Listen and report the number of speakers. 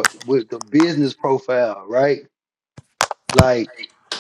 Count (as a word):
one